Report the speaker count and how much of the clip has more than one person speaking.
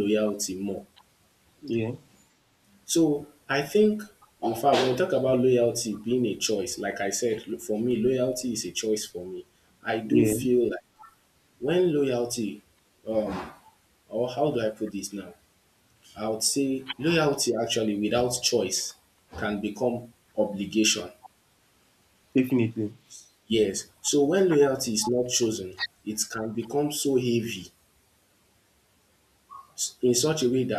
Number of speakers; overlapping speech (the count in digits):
2, about 1%